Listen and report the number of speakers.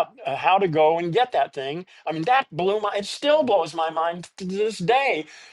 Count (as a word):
one